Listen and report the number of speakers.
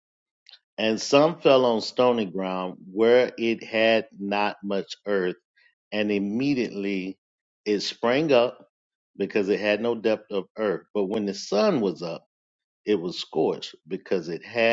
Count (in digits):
1